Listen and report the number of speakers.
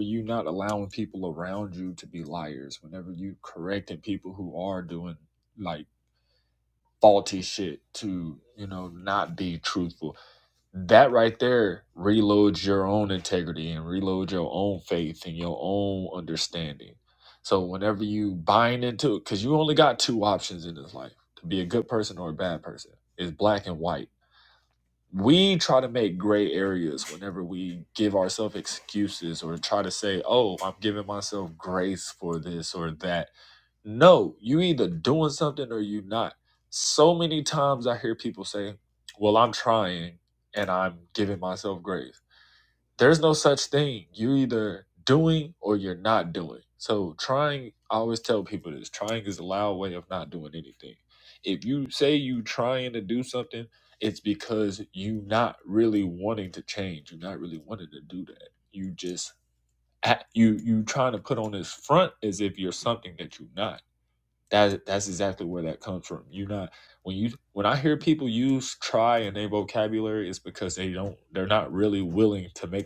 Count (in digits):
1